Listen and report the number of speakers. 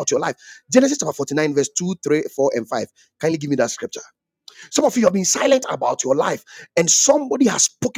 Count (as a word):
one